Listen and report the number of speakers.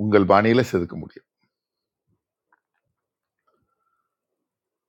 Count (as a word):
one